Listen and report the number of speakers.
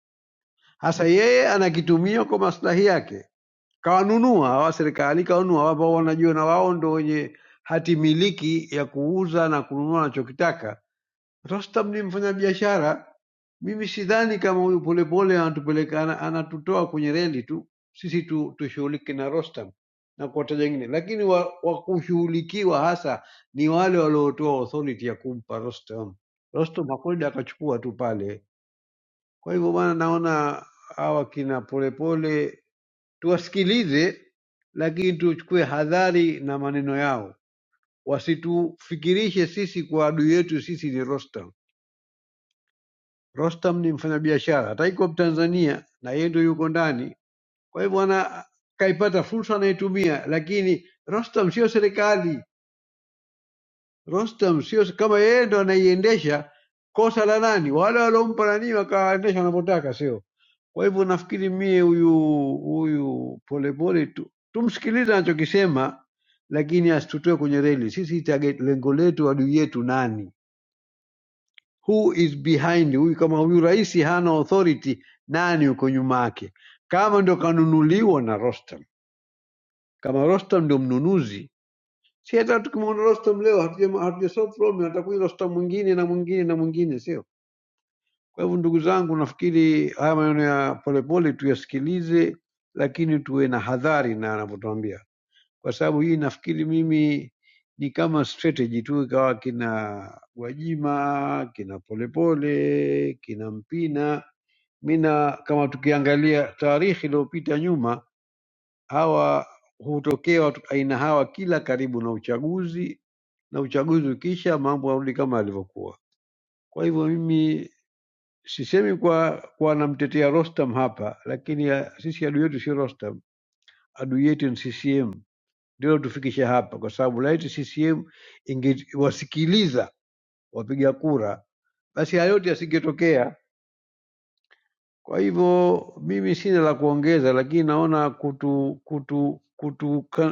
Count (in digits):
1